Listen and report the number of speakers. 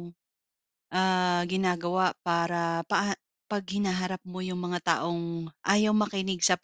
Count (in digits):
1